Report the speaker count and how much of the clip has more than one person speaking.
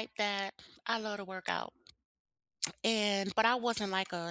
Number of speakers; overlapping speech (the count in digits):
1, no overlap